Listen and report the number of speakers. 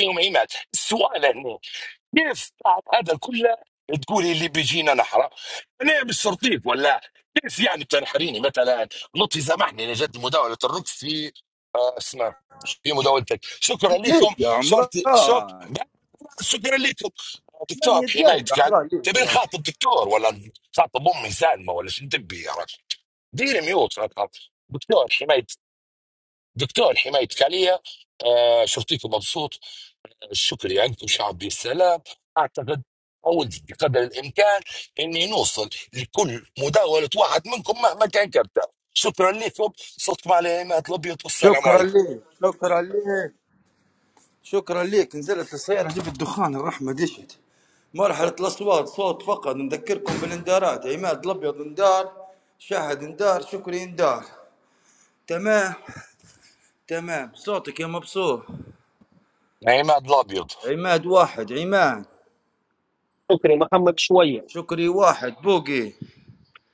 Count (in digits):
3